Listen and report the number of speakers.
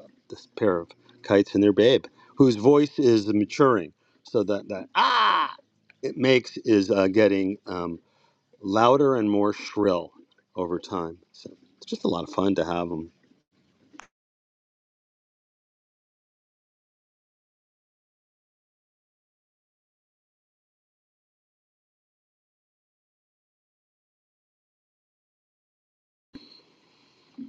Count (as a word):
one